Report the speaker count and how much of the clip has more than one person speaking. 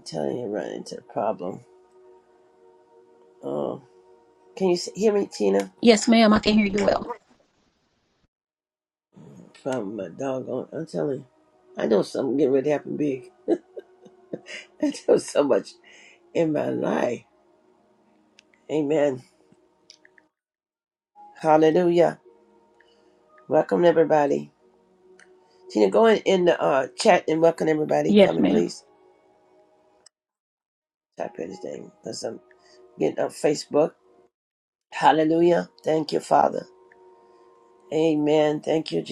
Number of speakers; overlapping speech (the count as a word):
two, about 1%